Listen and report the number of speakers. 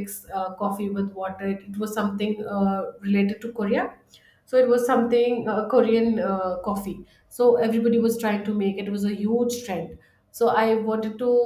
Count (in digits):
1